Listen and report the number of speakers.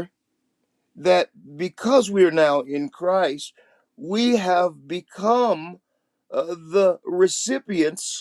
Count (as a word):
one